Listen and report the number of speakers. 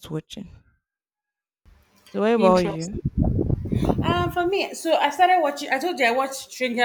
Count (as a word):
two